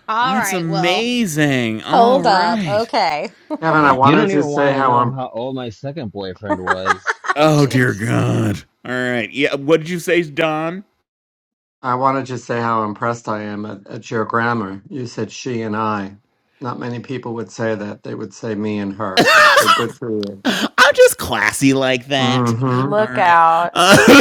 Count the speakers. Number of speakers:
4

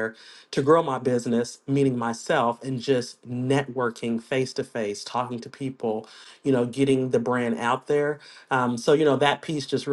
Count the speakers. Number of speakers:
1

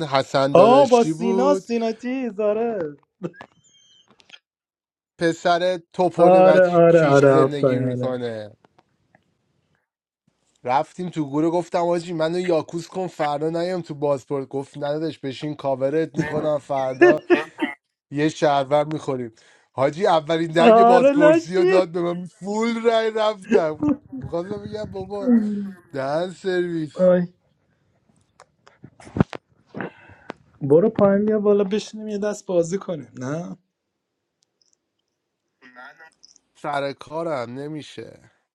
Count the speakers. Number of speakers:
2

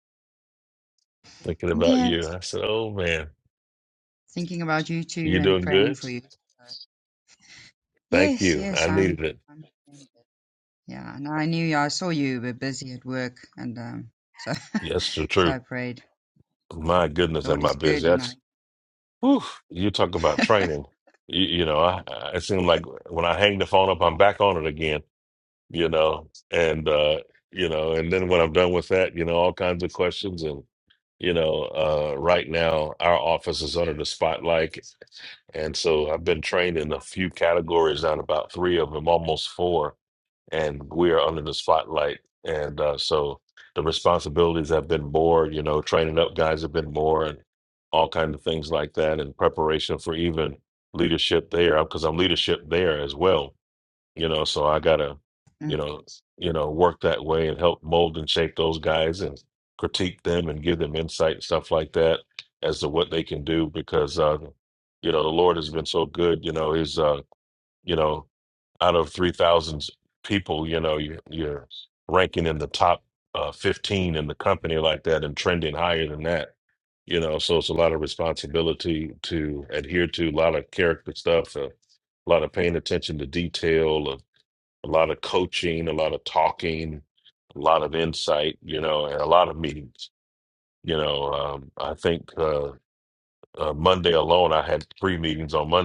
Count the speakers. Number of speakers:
2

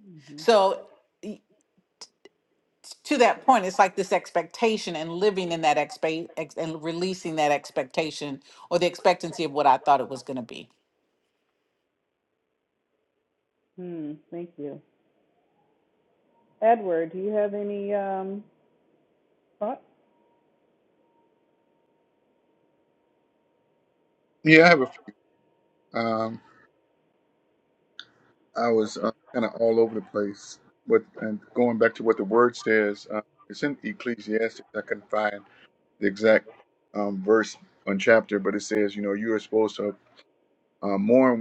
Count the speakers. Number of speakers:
3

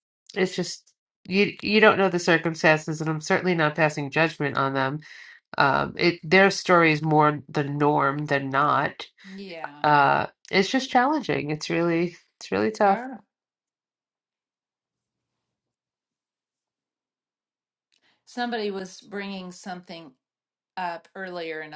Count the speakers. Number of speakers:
2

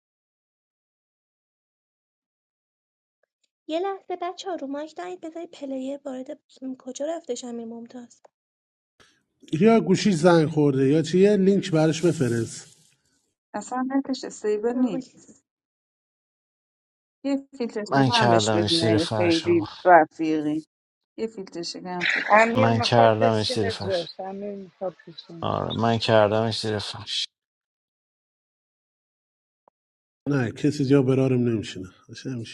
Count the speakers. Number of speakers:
5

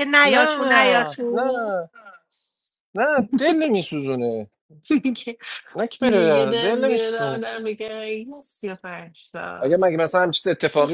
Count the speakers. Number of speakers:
3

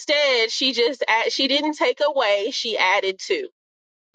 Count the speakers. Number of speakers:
1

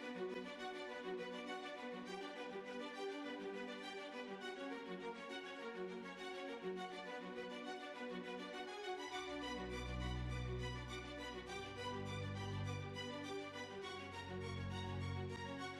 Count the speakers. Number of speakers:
0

